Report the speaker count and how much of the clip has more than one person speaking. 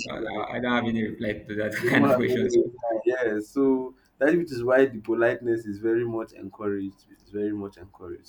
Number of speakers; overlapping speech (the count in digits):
2, about 16%